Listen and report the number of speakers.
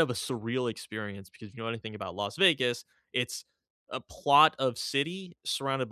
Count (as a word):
one